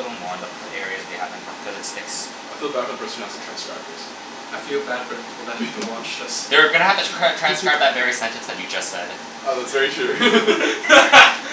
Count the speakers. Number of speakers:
three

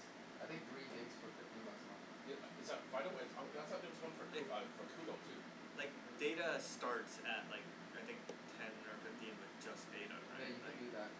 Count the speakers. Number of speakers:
three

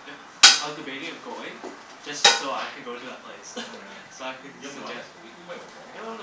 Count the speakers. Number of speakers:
two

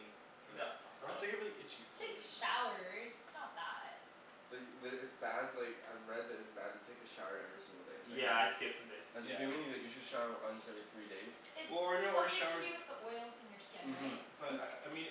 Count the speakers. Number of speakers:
four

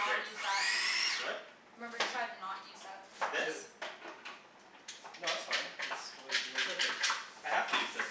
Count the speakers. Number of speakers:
three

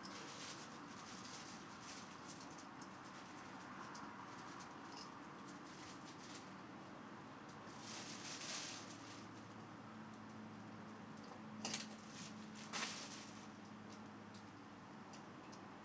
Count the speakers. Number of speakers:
zero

